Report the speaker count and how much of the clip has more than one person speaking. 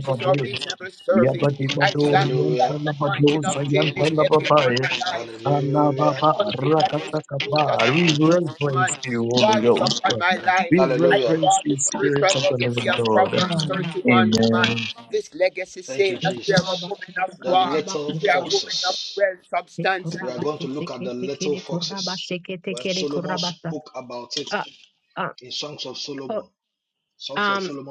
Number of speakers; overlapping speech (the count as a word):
four, about 66%